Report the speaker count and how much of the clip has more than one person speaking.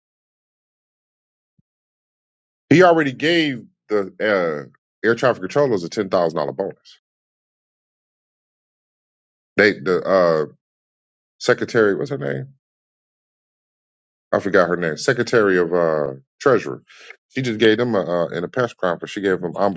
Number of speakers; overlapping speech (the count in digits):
1, no overlap